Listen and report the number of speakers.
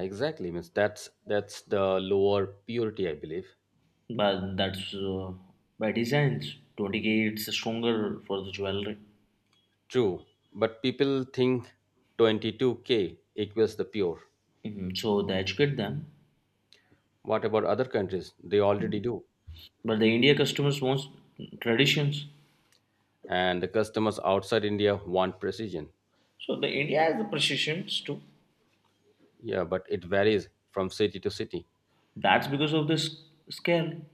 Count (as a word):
two